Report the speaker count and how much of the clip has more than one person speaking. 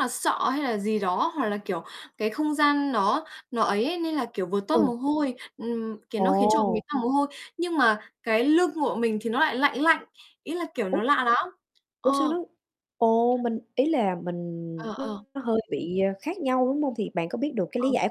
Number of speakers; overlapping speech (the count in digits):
2, about 10%